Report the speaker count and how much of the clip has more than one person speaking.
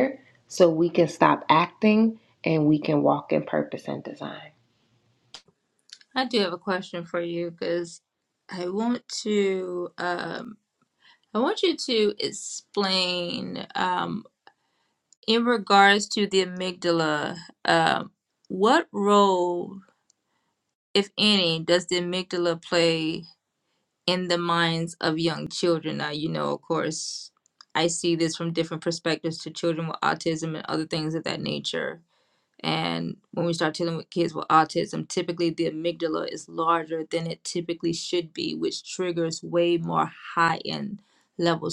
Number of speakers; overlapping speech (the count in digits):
2, no overlap